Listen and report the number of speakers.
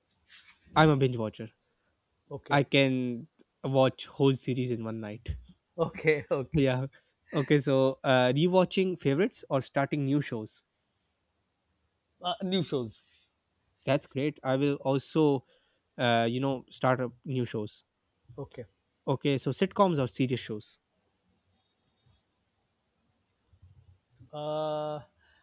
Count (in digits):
2